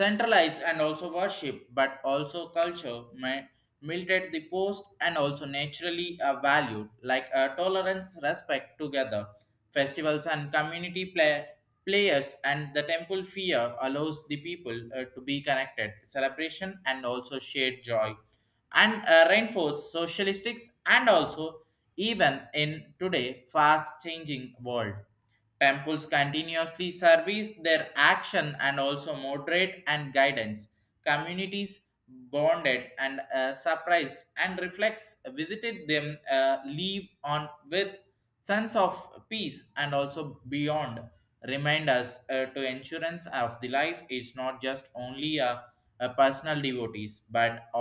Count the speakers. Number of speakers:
1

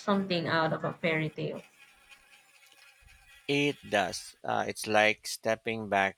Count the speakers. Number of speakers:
2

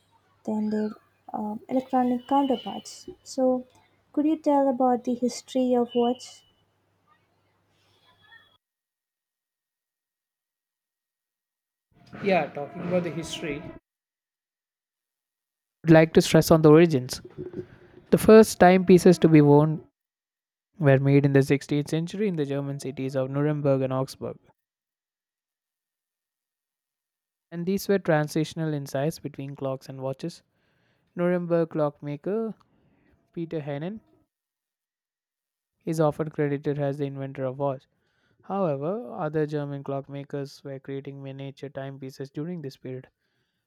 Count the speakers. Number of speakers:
2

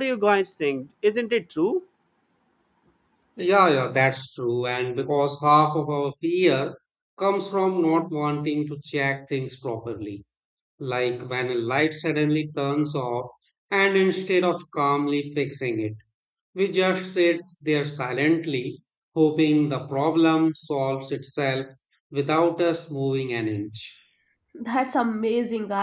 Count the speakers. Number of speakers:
3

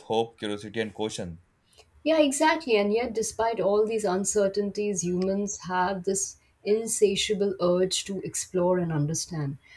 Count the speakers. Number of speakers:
2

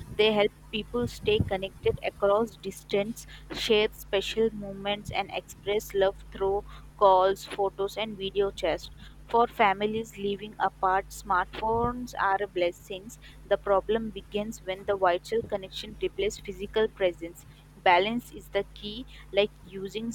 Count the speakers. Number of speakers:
1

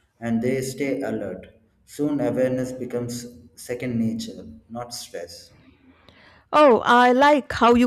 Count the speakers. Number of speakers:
2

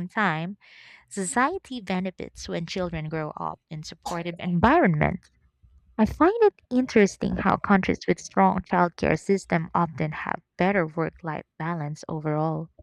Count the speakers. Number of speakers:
1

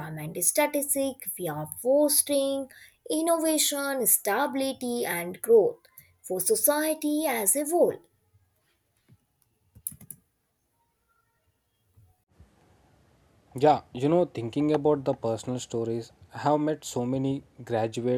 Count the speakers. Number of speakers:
2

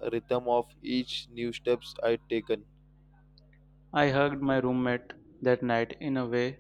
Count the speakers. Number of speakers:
2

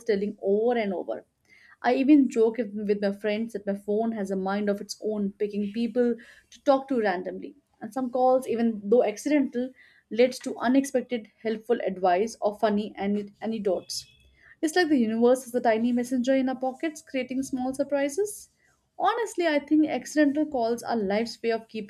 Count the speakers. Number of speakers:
1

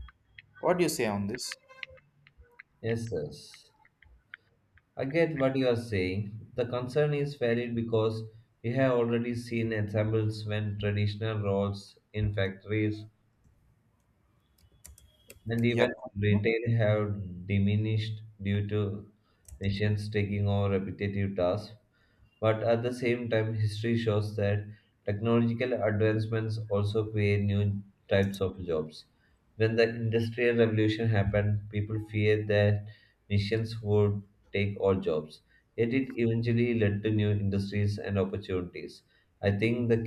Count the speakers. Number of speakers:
2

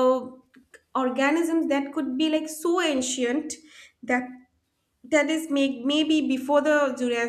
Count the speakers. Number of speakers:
1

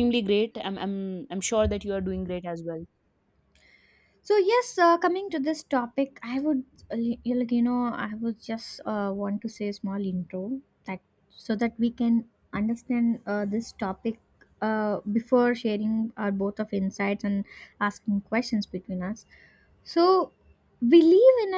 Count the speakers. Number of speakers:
2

